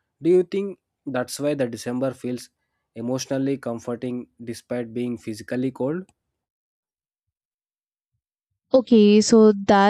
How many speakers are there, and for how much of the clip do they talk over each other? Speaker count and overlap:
2, no overlap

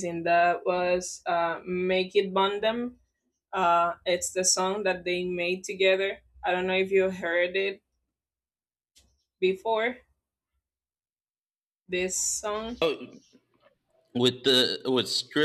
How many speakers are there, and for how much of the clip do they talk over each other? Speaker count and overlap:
2, no overlap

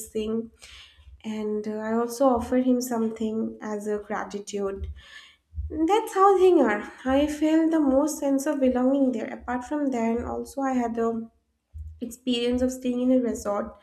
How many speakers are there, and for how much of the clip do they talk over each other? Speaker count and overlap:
1, no overlap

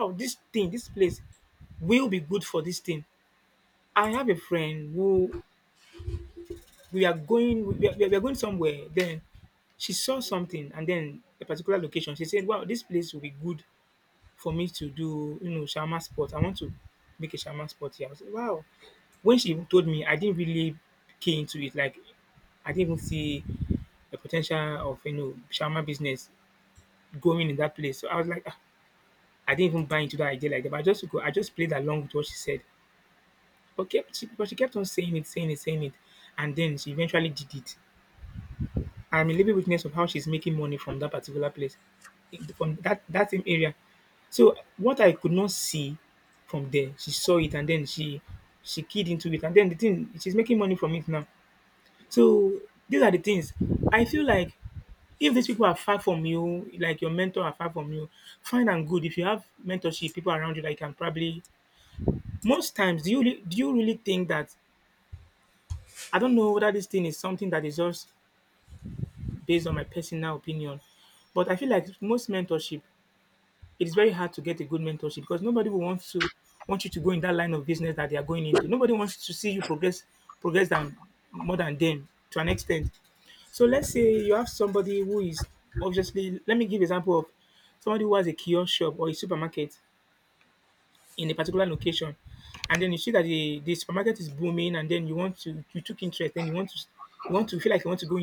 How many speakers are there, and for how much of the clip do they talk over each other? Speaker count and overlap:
1, no overlap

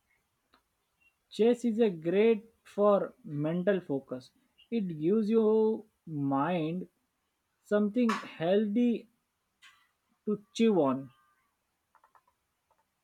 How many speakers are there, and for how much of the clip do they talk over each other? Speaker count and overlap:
1, no overlap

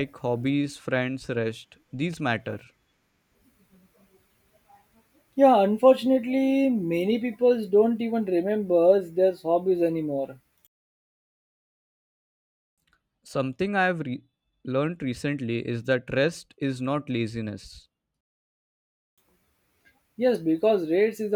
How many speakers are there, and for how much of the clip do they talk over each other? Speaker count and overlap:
2, no overlap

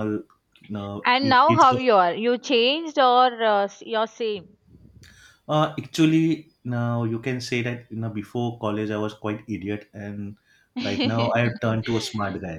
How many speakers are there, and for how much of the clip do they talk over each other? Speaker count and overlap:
2, about 2%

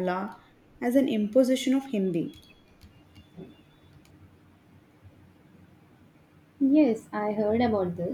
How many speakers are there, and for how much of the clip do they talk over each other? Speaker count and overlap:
2, no overlap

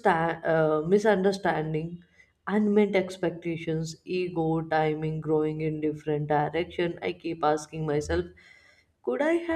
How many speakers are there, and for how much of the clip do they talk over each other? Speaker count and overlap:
1, no overlap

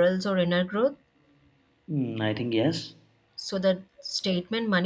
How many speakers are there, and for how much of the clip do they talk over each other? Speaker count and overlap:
2, no overlap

